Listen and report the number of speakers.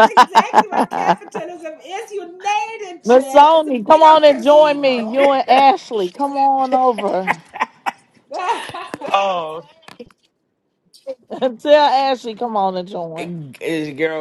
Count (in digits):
3